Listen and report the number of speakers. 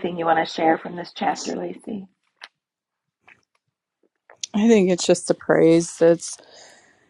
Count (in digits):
2